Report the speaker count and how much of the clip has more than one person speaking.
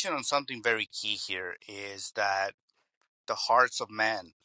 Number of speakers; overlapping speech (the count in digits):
1, no overlap